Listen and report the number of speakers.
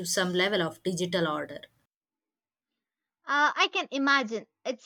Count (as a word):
two